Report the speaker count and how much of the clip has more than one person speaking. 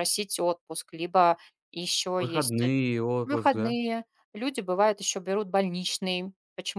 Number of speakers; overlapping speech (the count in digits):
2, about 14%